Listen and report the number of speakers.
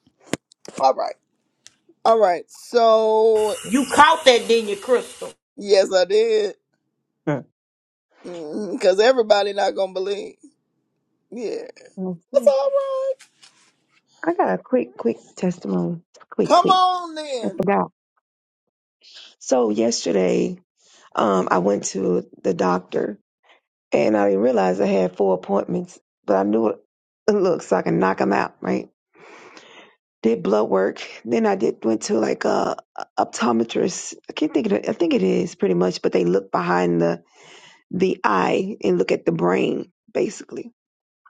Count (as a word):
three